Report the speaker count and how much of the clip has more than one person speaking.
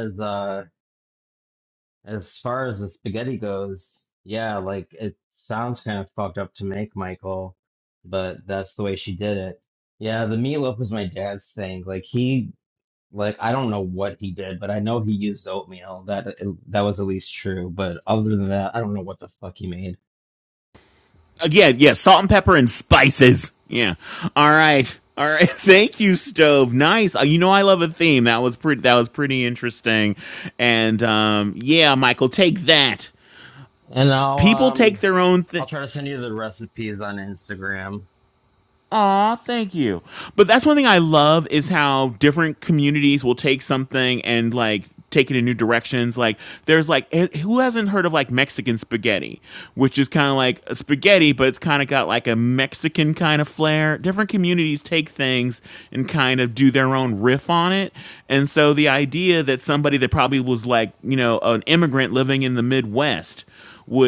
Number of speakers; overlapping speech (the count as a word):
two, about 1%